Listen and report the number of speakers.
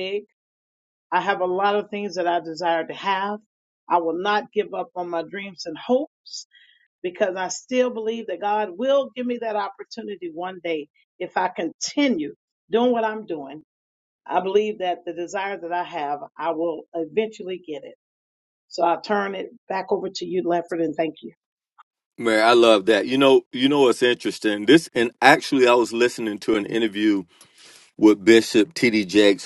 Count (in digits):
2